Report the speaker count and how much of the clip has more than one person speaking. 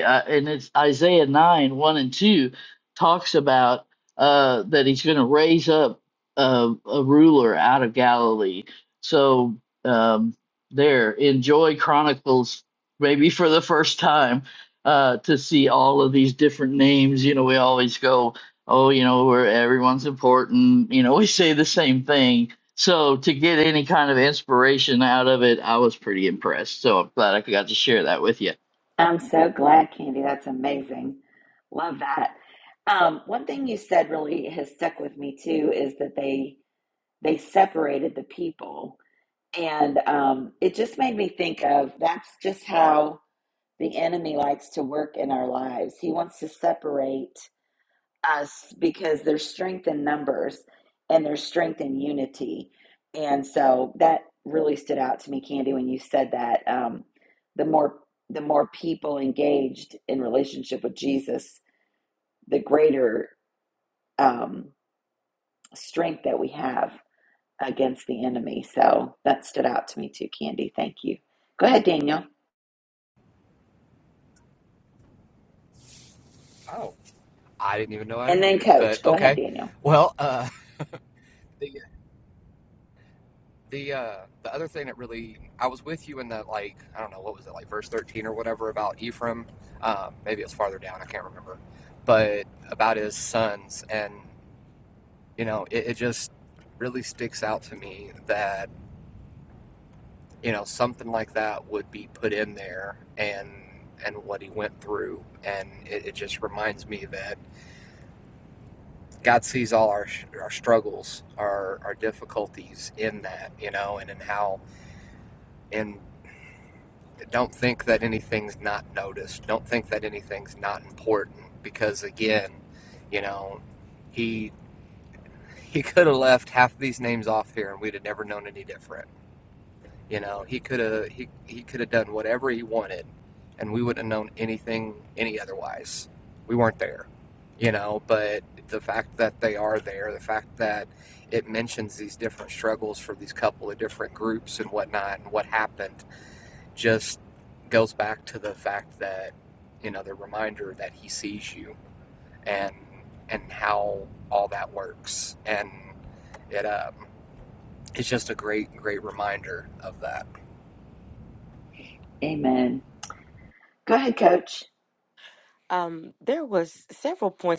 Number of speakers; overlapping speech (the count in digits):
4, about 1%